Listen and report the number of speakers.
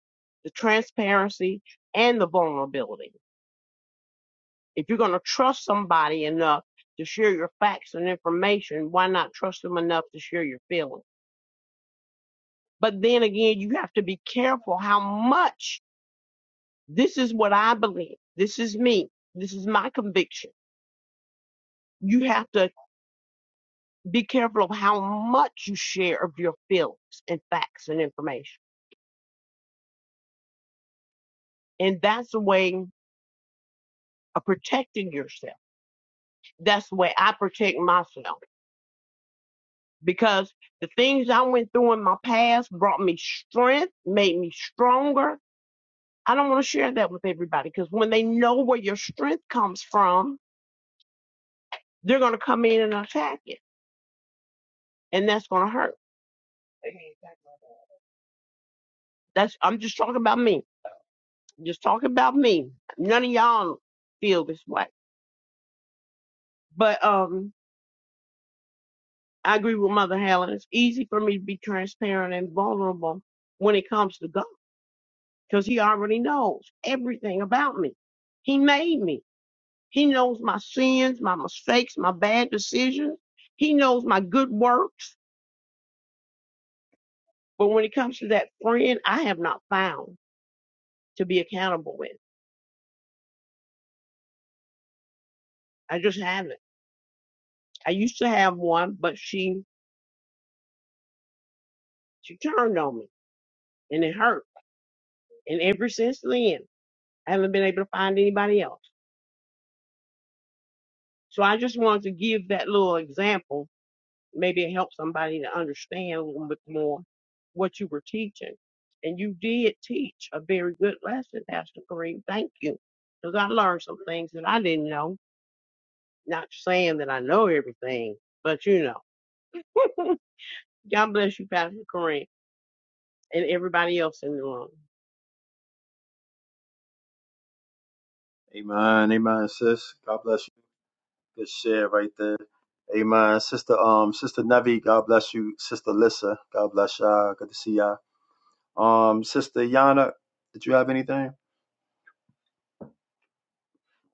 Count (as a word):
two